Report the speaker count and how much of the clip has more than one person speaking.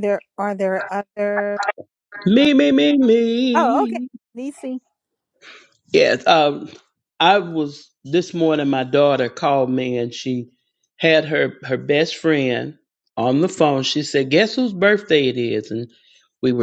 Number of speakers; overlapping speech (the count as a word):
two, about 3%